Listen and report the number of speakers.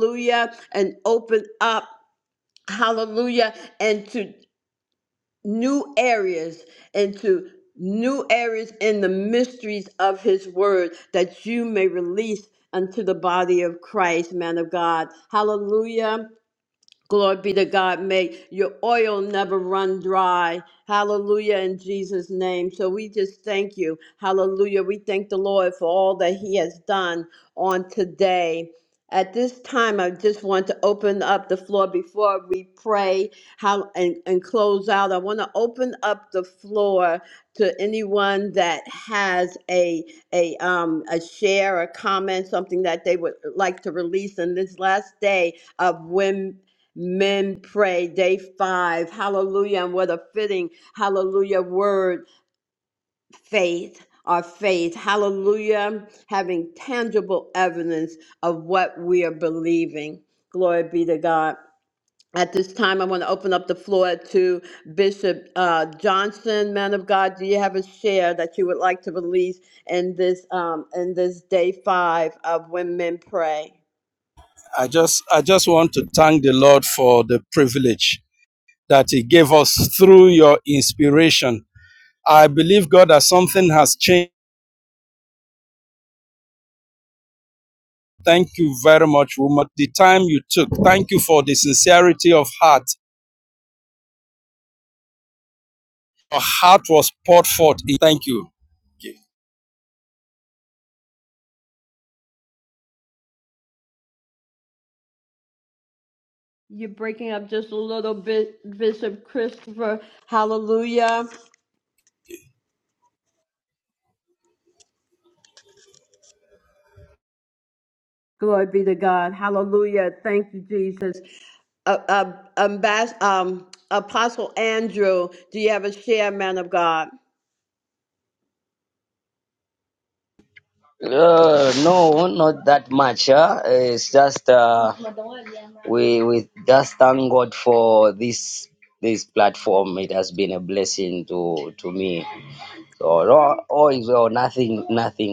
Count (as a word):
three